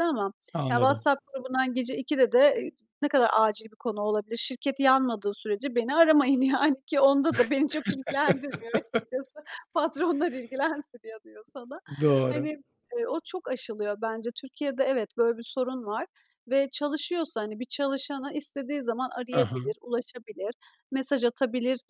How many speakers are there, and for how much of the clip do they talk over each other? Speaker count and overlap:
2, about 4%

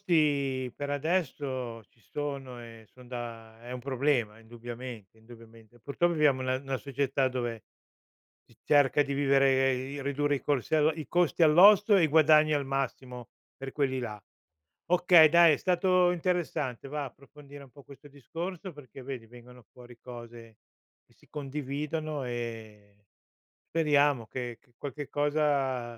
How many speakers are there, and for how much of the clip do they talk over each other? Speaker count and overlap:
1, no overlap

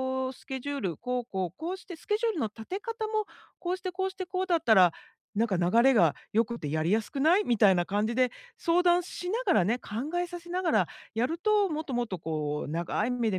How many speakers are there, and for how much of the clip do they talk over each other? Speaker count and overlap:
1, no overlap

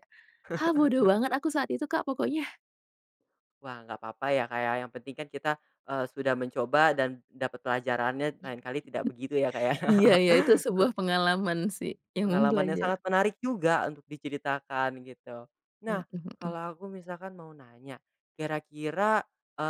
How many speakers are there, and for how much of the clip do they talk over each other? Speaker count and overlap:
2, about 5%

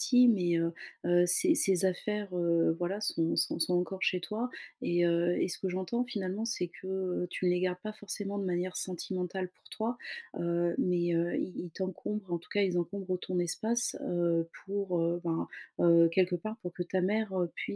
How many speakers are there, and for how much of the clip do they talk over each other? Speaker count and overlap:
1, no overlap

